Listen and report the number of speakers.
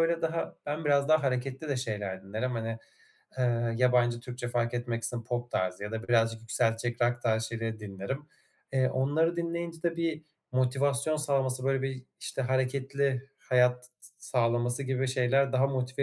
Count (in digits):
1